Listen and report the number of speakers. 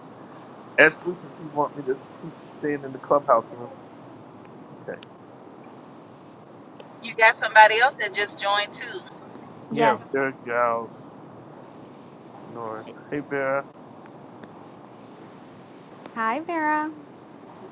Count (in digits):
3